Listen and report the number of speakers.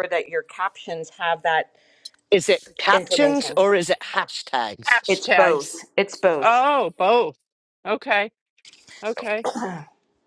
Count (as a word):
three